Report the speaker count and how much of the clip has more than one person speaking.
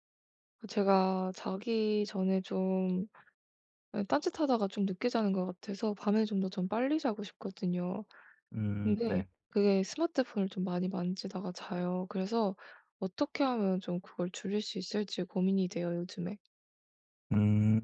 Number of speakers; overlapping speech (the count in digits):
2, about 2%